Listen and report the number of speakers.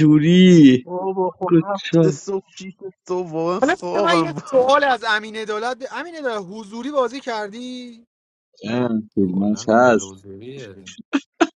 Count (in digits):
4